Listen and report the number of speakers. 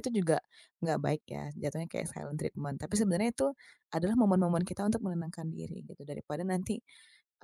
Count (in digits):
1